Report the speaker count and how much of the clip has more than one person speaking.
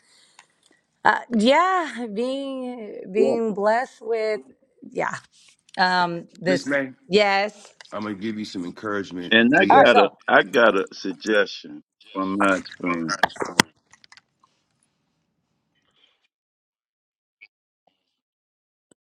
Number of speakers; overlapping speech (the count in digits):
3, about 7%